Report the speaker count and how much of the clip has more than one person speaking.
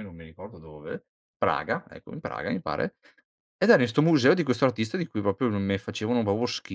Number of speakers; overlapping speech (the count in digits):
1, no overlap